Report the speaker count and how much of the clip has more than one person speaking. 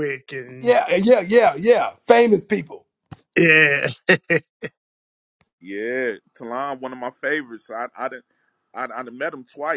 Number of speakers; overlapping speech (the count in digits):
3, no overlap